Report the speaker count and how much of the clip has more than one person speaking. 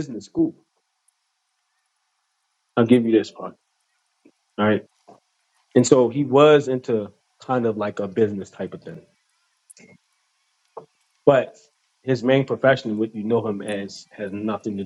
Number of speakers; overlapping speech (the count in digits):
1, no overlap